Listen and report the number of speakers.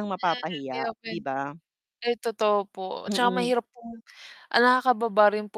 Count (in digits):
2